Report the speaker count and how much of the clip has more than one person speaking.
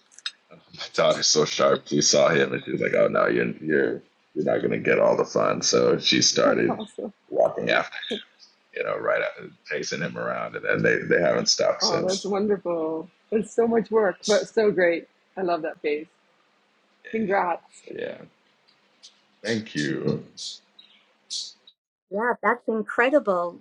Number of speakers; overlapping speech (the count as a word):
three, about 3%